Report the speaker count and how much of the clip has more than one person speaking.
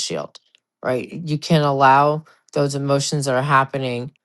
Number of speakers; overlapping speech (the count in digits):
1, no overlap